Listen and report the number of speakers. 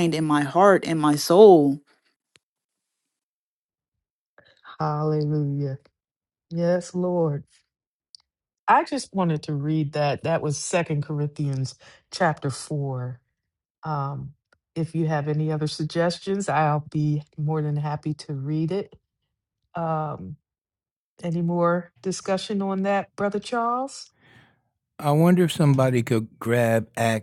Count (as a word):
three